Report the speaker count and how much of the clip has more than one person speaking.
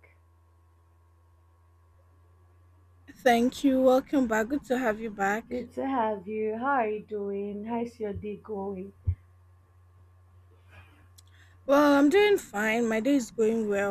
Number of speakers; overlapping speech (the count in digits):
2, about 1%